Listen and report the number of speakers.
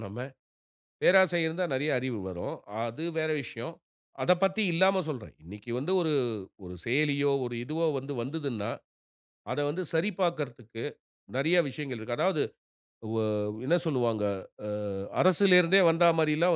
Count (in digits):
1